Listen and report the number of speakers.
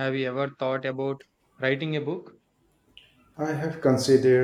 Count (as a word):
two